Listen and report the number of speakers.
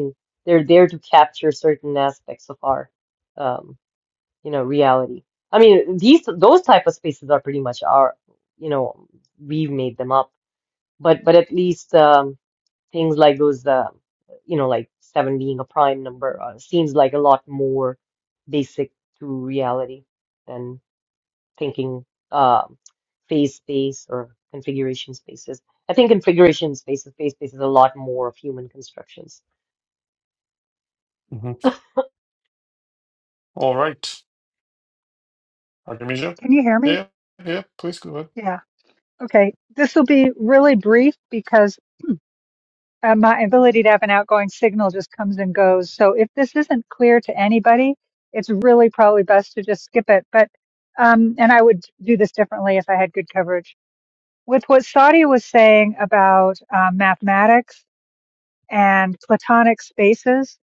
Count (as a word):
three